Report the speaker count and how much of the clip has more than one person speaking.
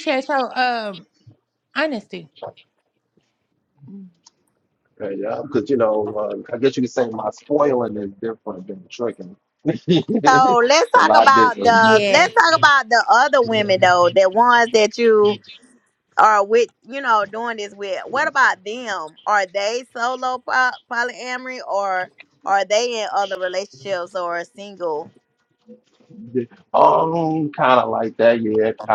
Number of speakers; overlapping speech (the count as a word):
three, about 6%